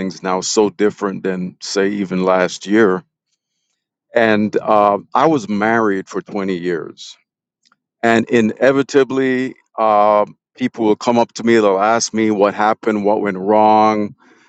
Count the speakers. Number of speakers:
1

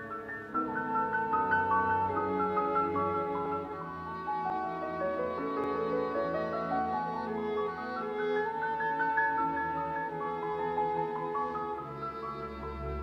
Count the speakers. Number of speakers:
0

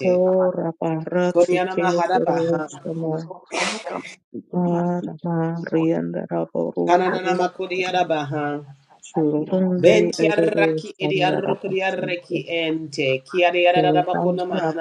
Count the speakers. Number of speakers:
3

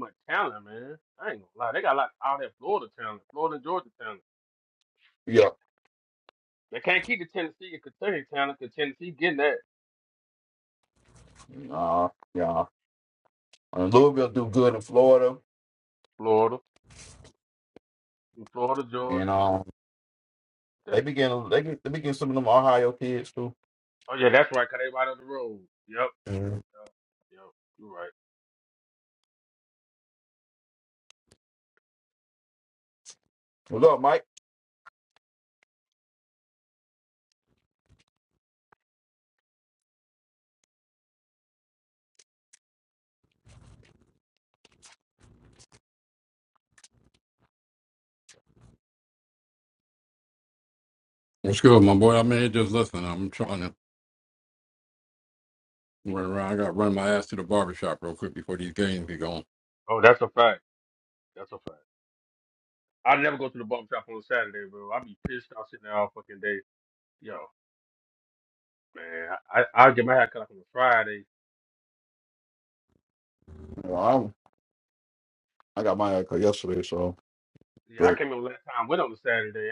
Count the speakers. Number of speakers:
3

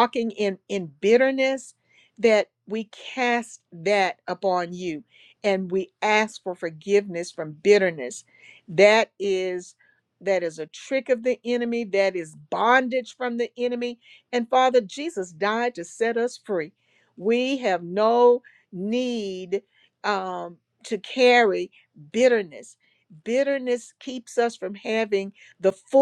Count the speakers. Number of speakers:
1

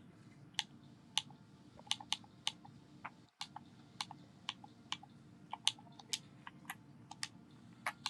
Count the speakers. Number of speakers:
0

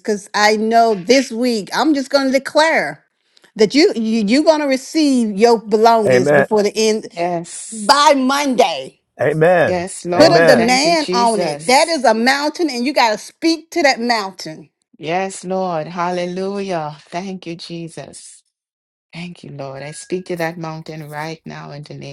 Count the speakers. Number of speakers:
3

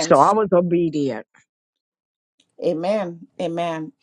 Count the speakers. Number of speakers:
2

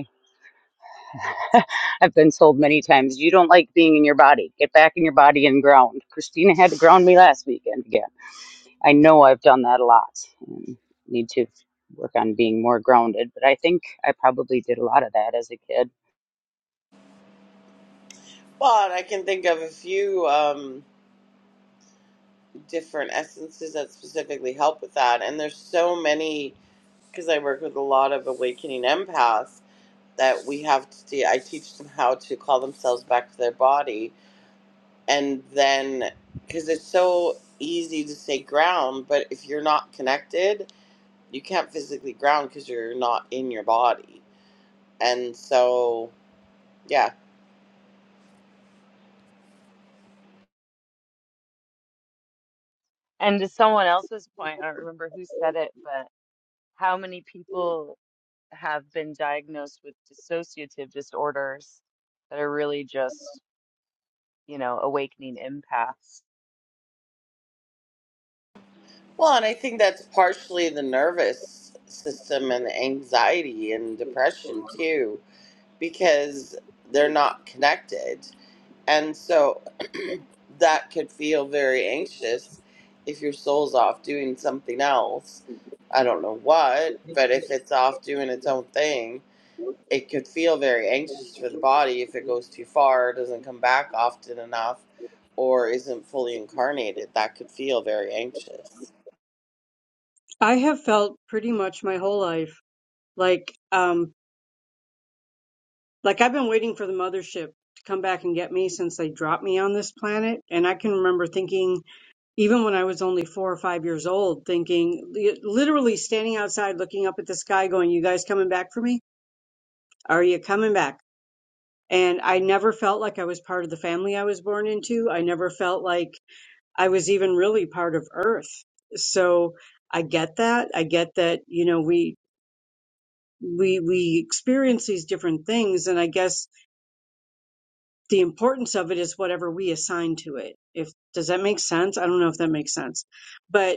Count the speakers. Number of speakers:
4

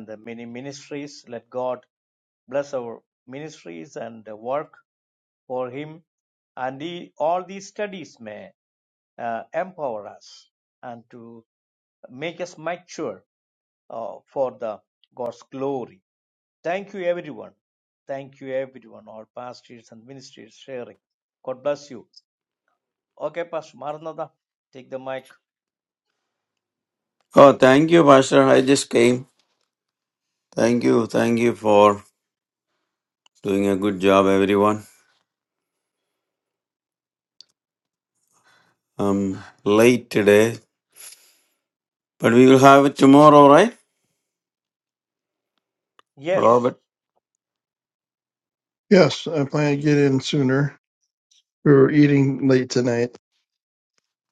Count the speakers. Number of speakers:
3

